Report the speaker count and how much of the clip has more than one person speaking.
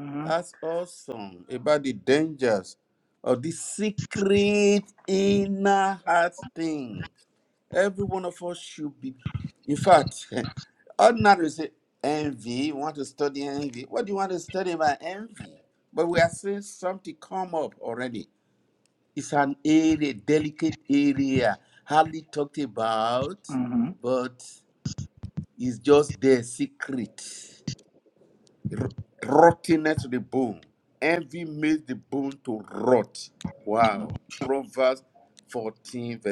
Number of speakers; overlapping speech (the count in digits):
2, about 1%